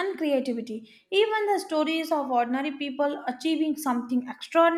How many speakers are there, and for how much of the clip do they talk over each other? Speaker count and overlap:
1, no overlap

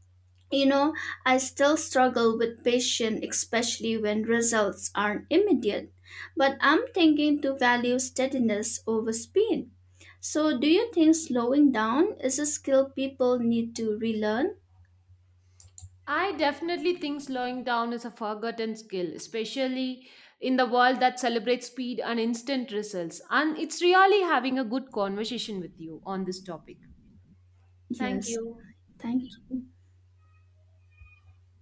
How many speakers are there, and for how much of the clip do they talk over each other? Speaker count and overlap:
2, about 1%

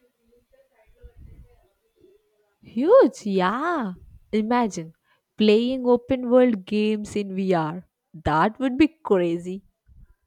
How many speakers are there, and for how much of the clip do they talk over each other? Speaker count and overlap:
1, no overlap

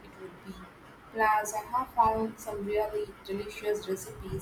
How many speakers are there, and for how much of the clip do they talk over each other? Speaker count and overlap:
1, no overlap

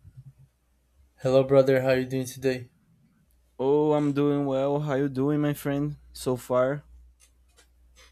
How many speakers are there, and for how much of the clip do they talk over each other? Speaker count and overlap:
2, no overlap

